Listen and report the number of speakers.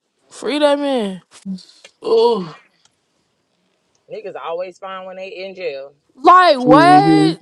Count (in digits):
3